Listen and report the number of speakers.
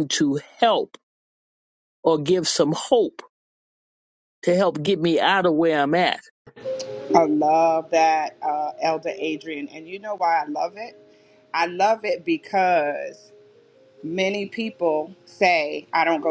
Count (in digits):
2